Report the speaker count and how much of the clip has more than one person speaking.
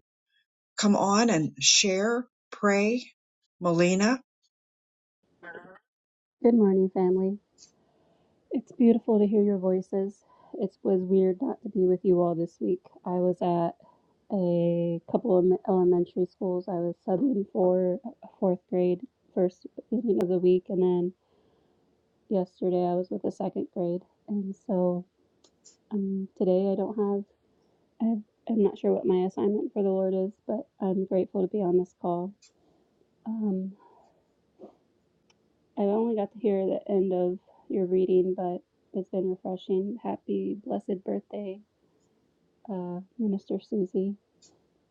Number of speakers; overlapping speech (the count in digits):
2, no overlap